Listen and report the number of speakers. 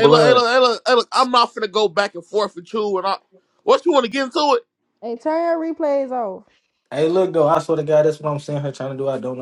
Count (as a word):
three